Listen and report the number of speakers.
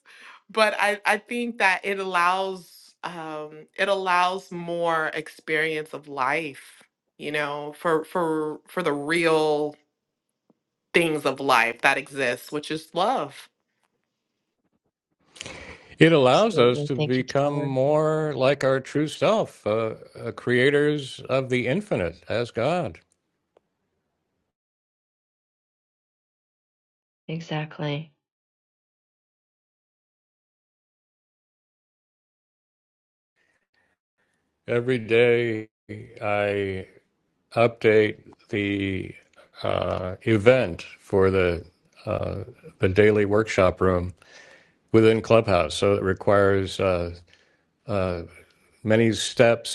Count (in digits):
3